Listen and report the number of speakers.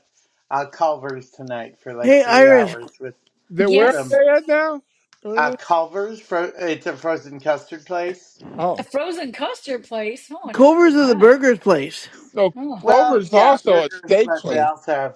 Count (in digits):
4